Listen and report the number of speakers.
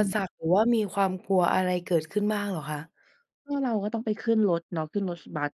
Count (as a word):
two